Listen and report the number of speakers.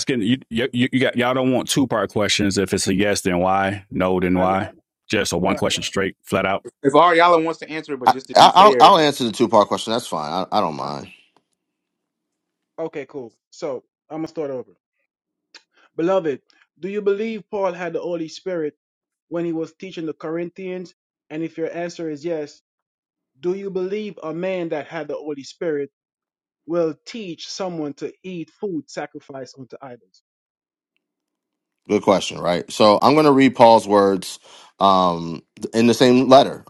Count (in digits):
4